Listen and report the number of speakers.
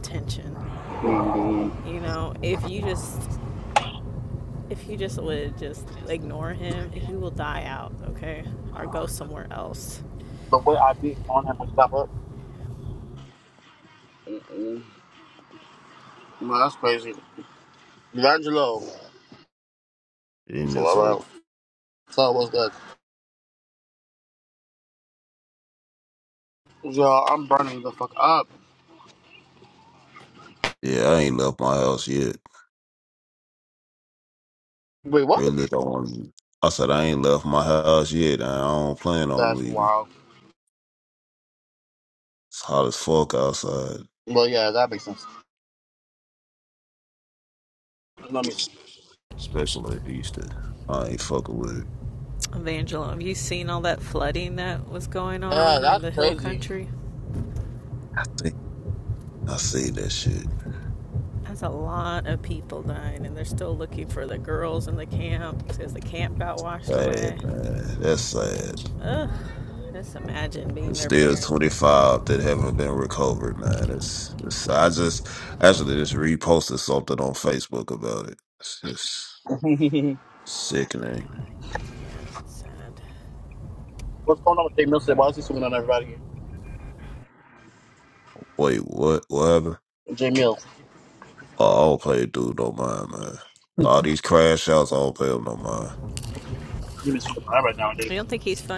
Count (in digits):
3